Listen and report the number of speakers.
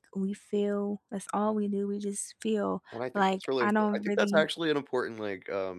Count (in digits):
2